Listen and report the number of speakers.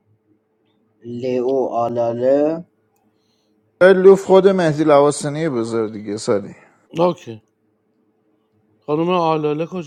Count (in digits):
3